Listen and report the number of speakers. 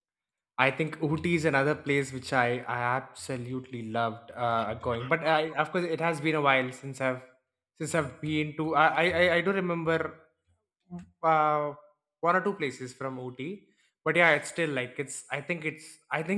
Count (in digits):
1